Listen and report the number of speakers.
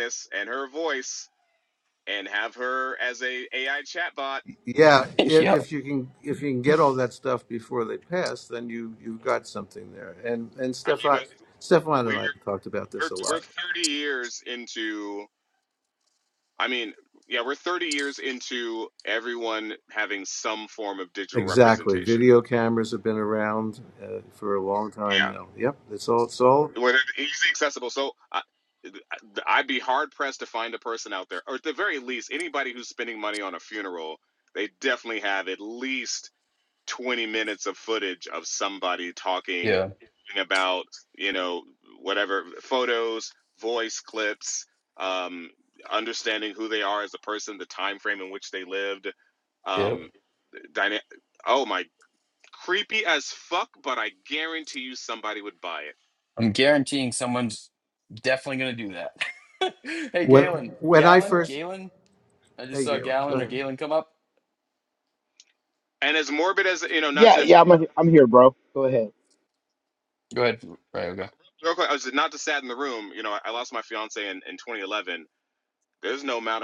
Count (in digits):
4